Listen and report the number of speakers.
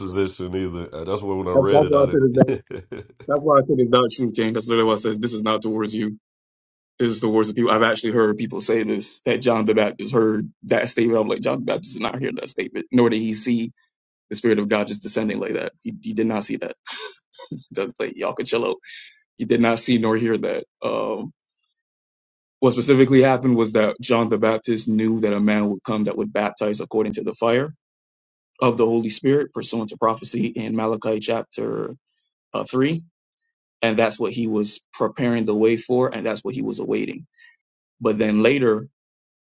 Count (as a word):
two